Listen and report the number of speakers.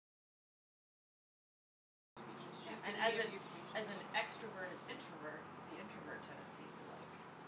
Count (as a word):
one